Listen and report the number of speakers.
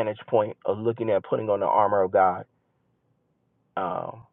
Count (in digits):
1